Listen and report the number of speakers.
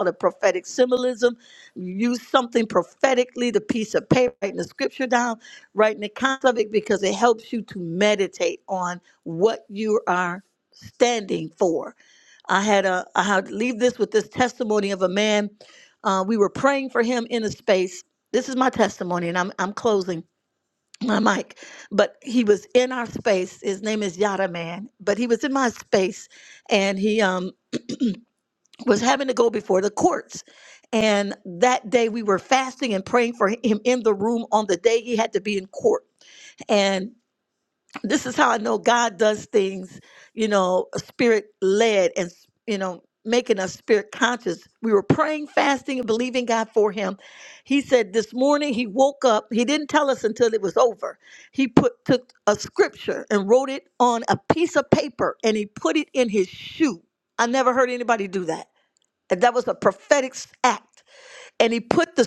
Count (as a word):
one